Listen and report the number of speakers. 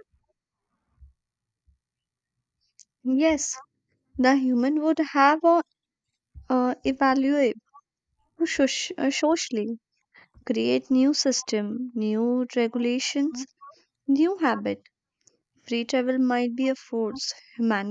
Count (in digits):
1